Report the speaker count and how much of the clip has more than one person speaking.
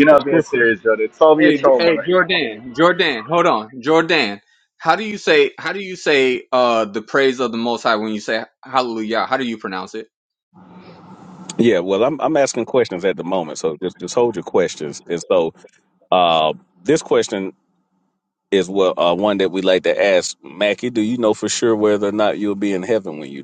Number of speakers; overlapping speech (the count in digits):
3, about 7%